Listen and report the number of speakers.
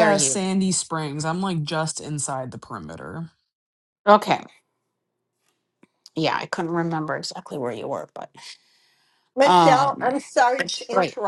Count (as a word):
three